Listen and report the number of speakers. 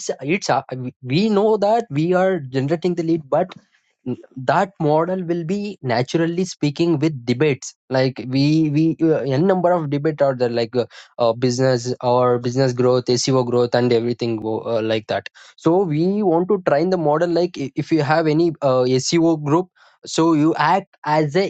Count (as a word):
one